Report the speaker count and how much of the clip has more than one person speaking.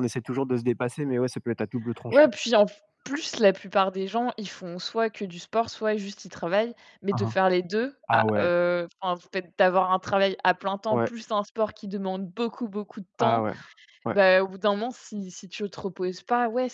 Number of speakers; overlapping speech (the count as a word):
two, about 8%